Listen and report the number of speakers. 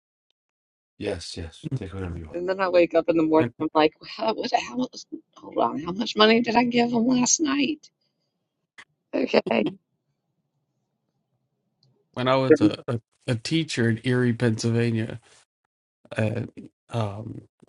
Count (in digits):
3